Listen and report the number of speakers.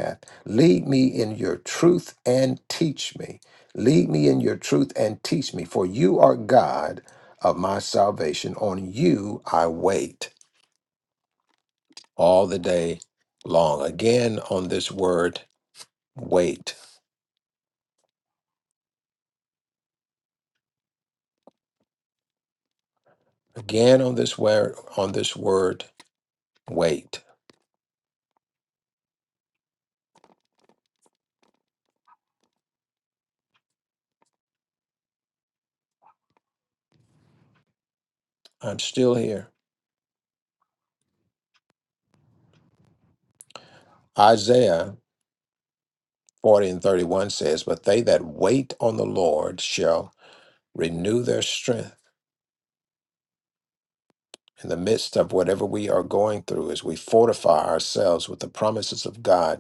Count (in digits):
1